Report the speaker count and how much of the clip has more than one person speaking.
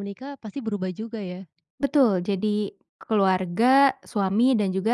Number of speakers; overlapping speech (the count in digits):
2, no overlap